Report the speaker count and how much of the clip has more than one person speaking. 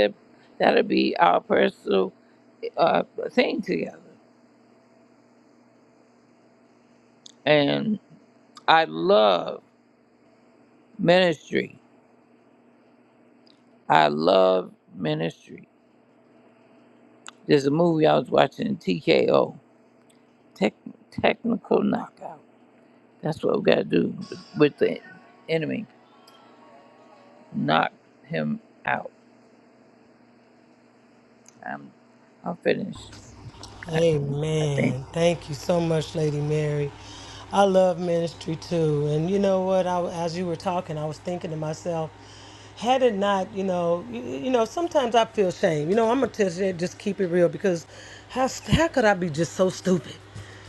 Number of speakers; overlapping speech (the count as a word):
two, about 1%